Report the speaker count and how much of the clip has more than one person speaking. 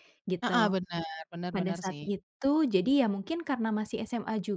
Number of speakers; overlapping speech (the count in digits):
2, about 19%